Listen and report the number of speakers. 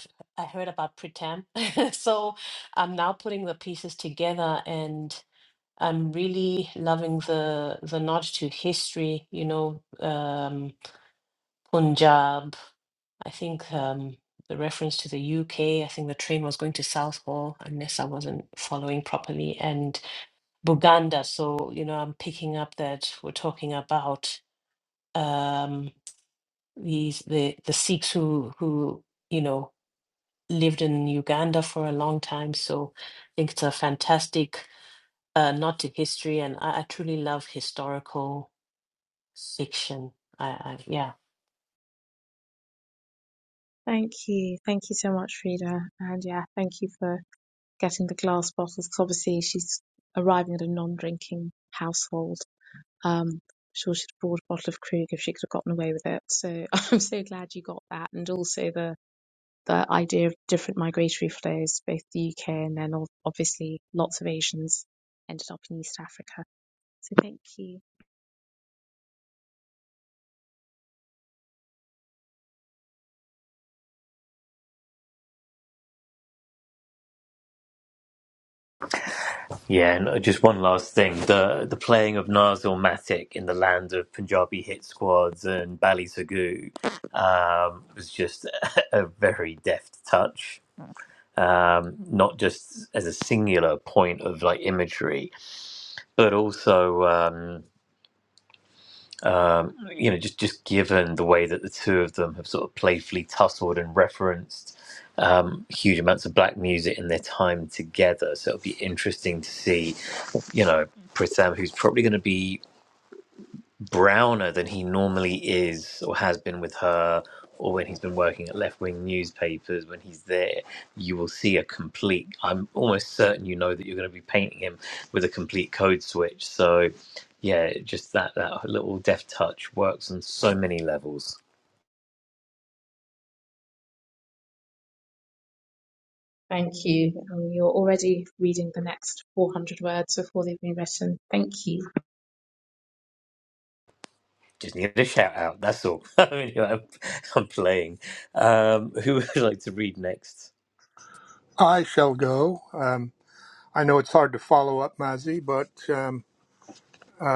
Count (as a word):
four